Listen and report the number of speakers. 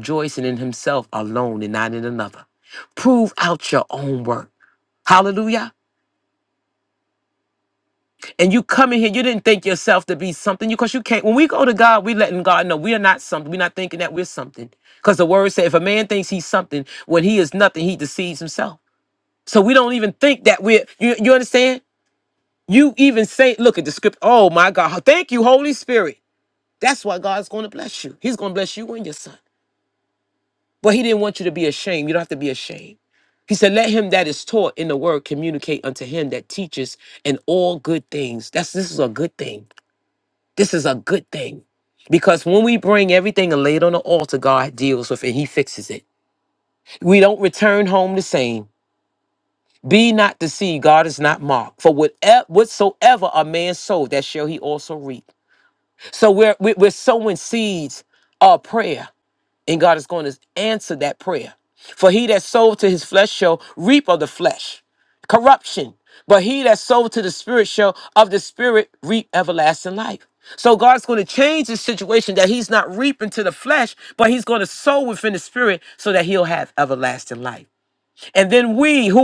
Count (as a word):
one